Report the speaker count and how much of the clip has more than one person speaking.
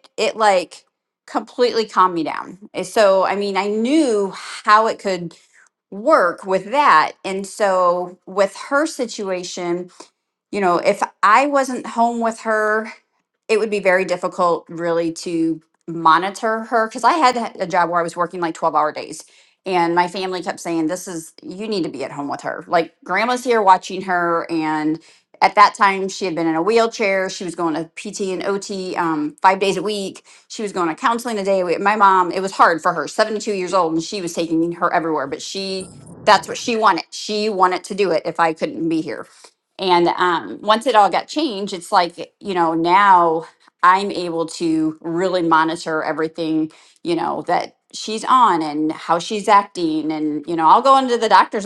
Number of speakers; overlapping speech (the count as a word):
one, no overlap